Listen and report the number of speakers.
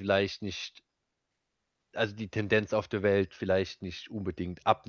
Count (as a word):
one